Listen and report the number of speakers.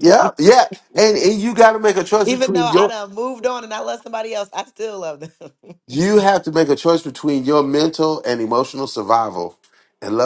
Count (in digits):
2